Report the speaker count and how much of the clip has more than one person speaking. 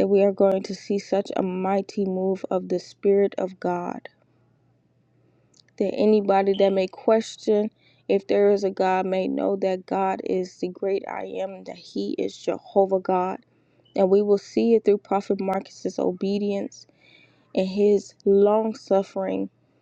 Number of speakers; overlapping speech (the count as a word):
one, no overlap